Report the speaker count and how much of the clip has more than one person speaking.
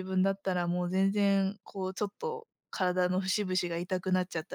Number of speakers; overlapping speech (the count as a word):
one, no overlap